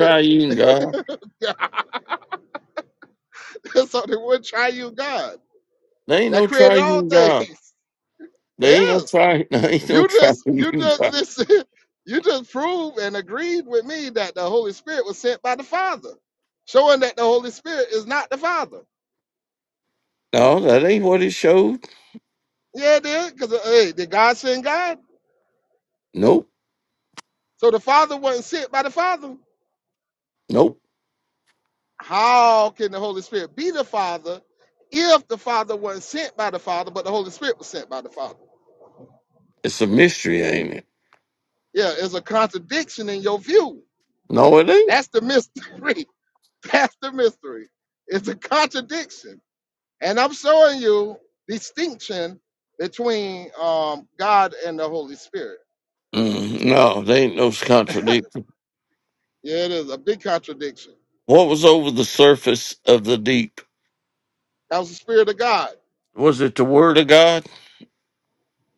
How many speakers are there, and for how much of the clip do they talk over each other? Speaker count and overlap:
2, about 4%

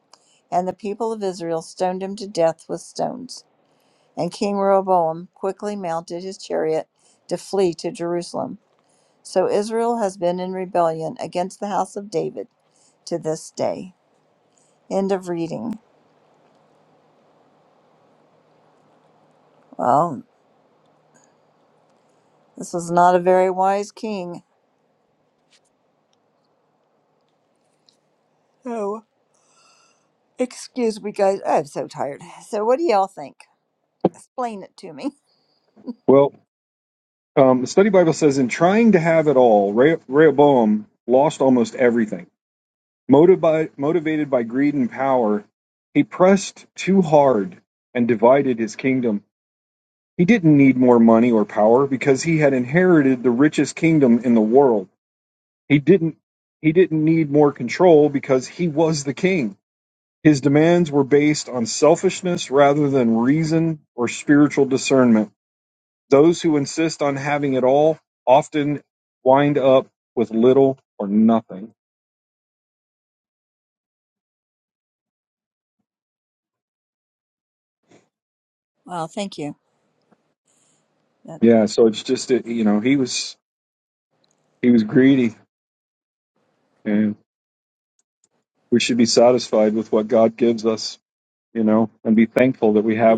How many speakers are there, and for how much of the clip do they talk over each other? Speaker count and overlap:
2, under 1%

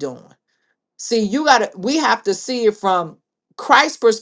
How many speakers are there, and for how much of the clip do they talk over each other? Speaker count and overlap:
1, no overlap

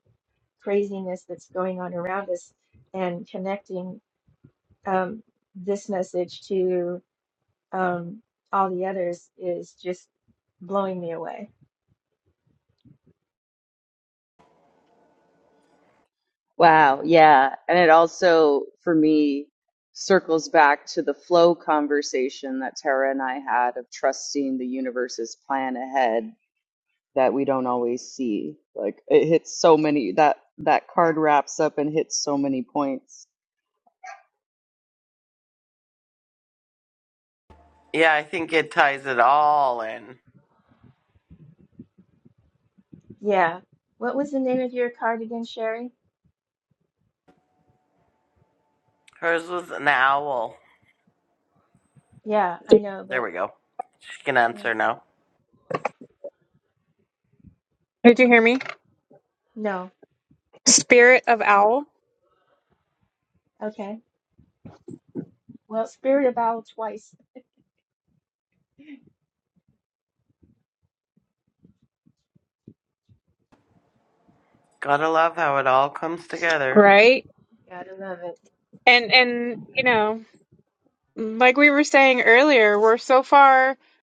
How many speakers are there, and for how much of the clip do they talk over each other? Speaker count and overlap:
4, under 1%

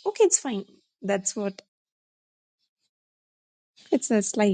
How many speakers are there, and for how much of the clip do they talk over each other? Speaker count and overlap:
1, no overlap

